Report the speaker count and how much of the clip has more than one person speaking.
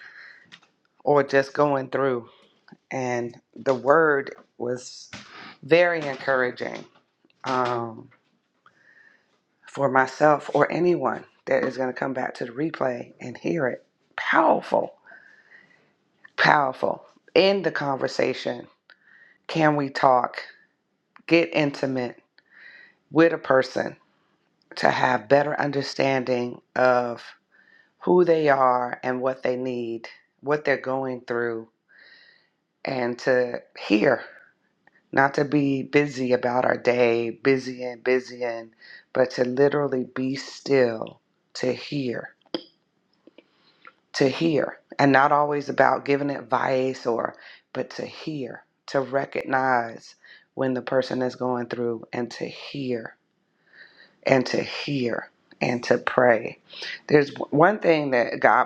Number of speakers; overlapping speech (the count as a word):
one, no overlap